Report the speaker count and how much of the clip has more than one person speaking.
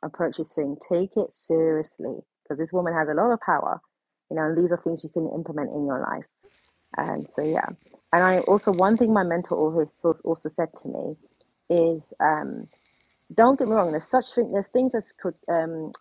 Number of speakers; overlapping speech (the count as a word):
one, no overlap